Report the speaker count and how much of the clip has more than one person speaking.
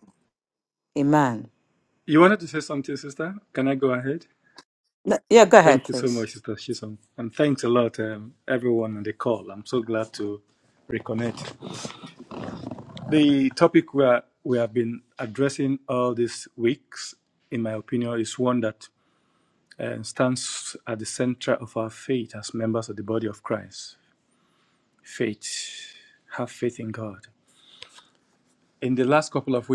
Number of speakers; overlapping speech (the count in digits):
2, about 1%